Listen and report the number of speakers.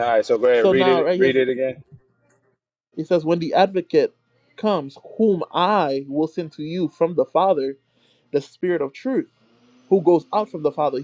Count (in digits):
2